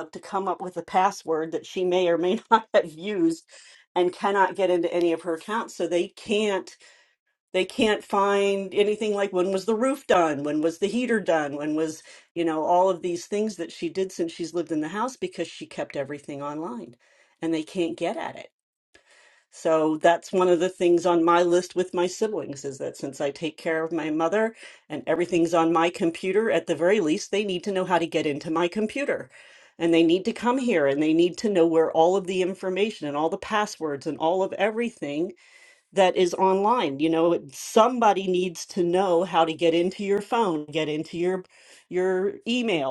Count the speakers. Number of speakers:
one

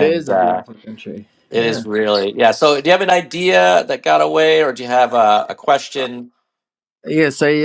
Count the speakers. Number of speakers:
two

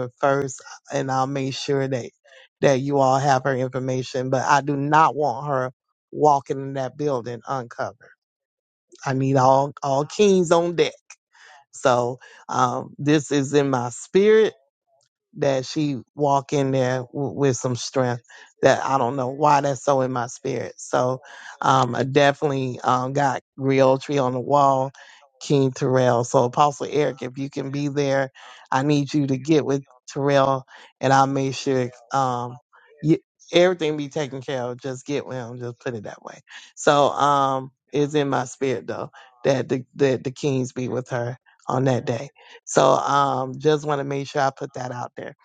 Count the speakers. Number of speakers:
one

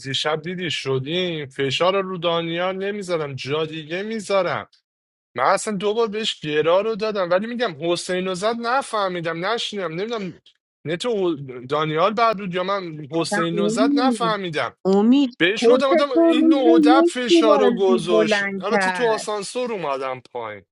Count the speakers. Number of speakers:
two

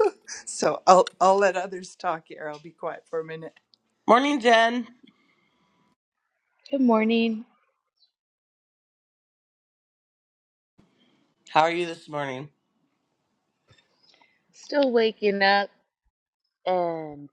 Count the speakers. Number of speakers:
three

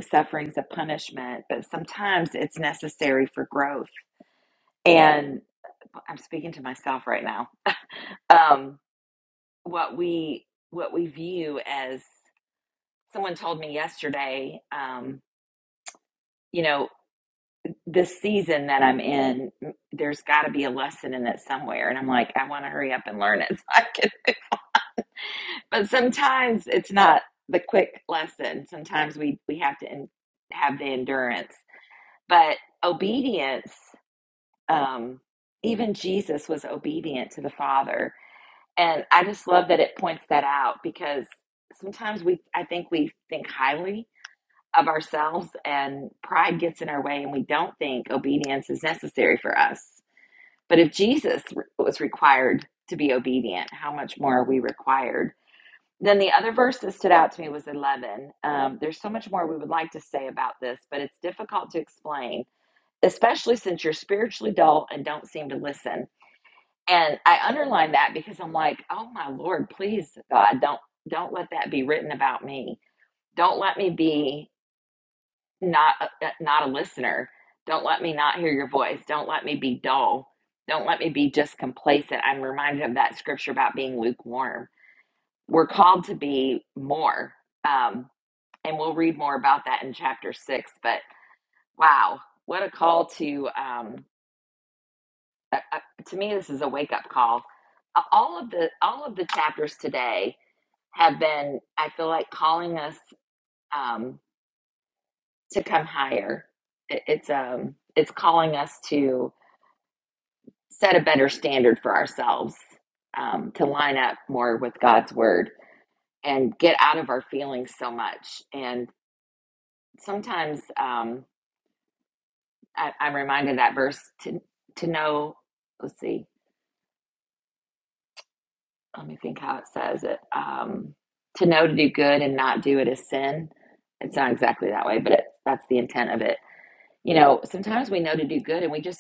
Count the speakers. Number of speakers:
one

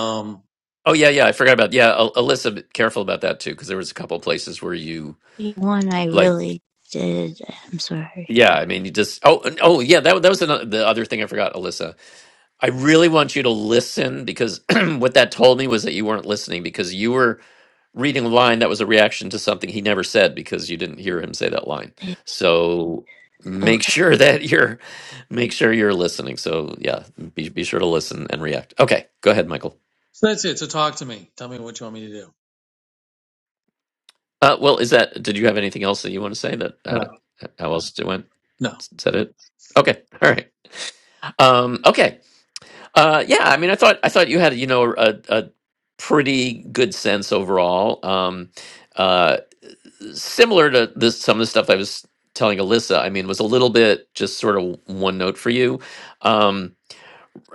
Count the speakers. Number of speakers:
three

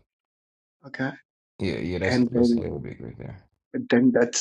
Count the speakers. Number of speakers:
two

